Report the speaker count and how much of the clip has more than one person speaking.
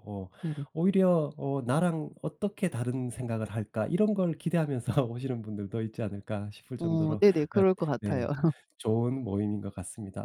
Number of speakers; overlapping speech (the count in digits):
2, about 11%